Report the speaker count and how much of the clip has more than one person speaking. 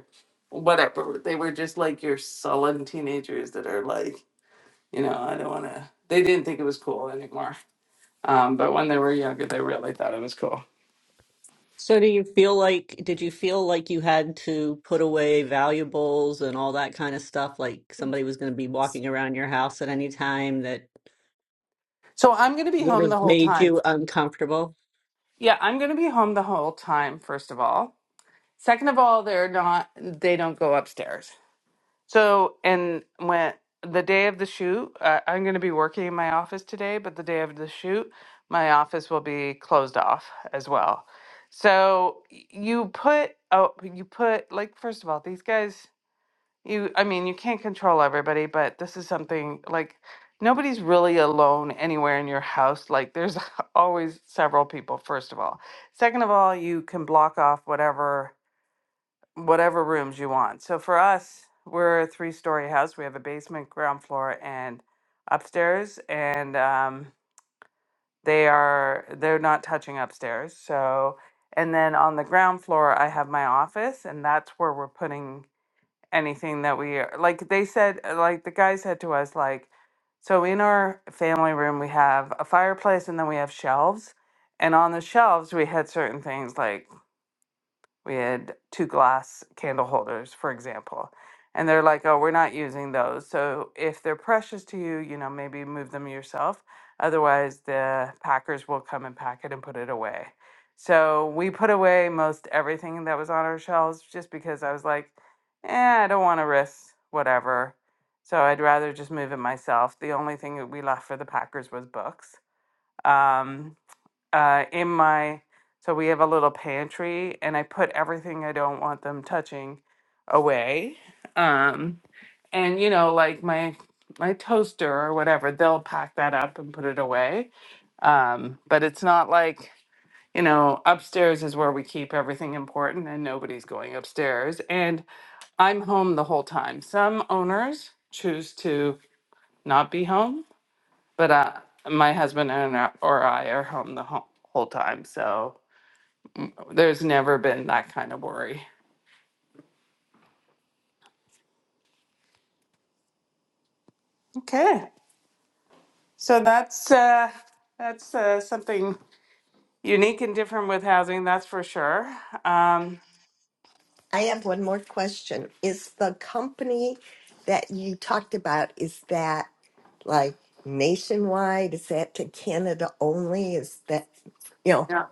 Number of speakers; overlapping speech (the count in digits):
3, about 1%